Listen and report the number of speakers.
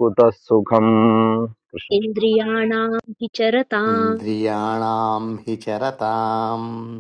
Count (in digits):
3